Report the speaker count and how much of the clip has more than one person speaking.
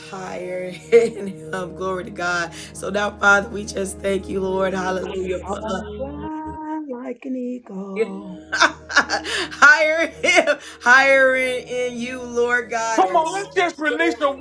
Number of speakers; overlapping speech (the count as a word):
three, about 5%